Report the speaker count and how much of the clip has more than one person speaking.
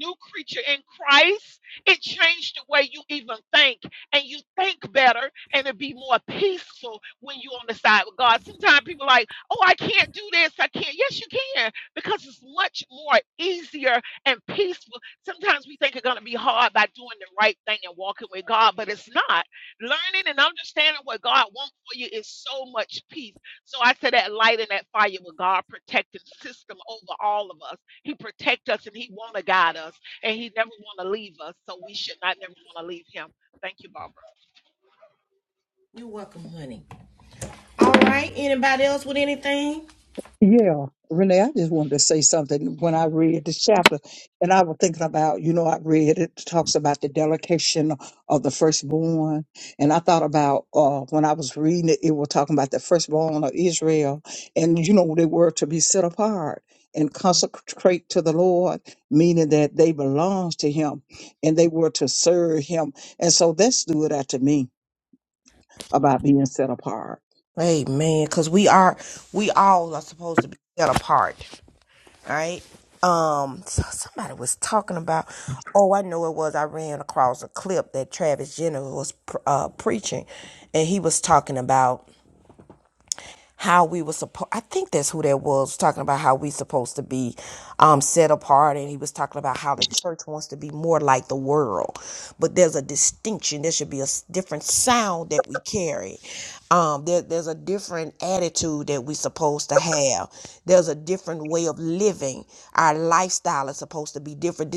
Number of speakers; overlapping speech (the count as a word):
three, no overlap